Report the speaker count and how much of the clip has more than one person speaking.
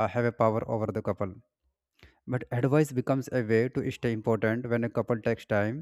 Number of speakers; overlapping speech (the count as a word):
one, no overlap